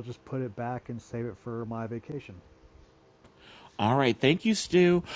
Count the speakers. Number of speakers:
2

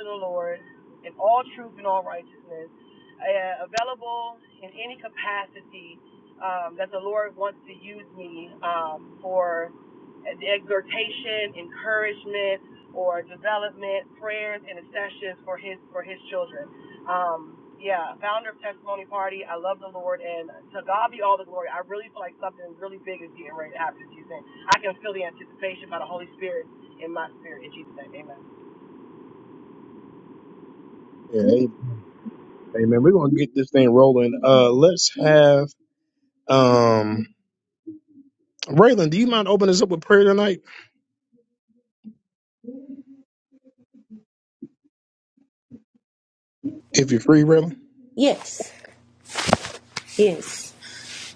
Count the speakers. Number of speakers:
3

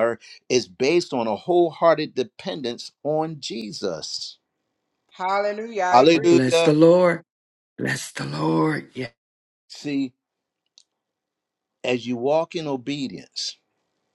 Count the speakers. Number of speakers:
3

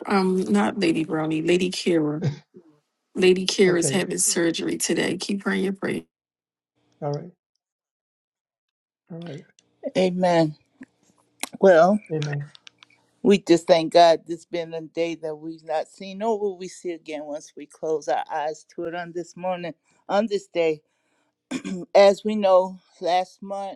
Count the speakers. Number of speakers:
3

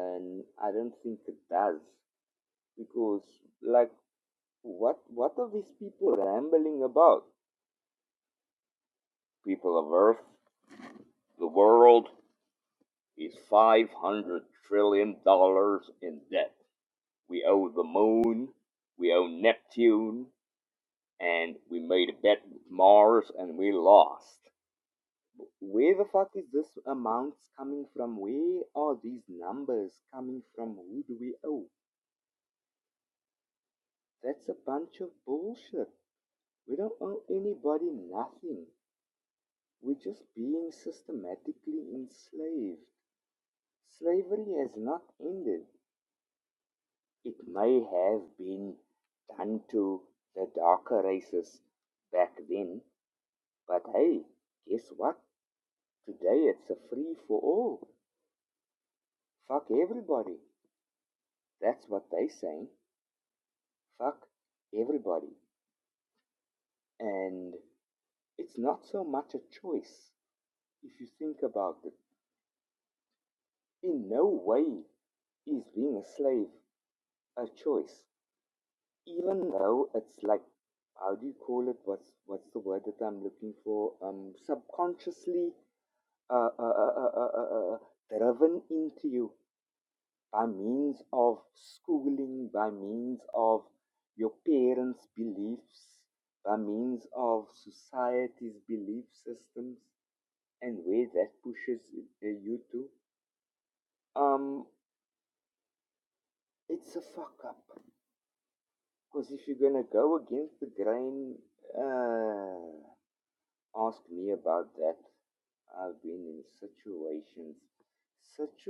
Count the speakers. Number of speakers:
1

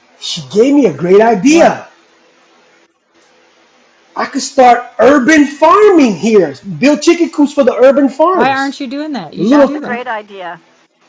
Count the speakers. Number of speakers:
3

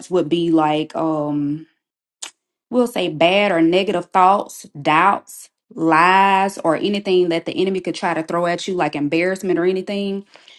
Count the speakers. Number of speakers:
1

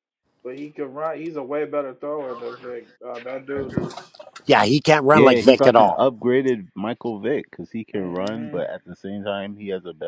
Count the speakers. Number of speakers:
3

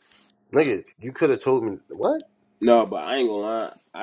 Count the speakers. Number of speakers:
2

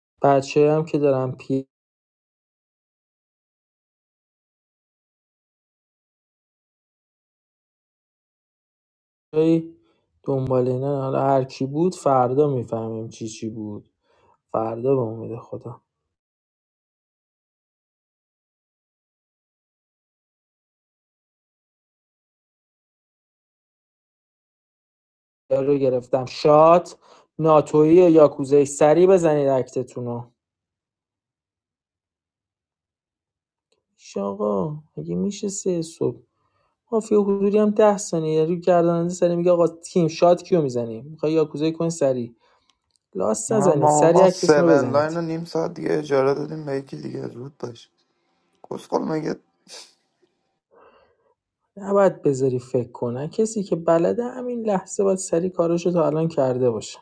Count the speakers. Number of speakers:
2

